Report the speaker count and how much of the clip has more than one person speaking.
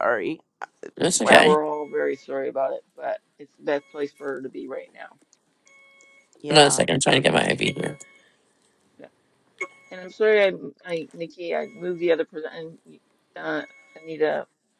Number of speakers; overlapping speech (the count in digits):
3, about 5%